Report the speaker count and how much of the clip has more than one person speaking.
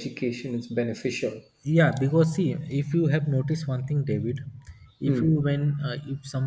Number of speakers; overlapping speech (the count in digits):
2, about 5%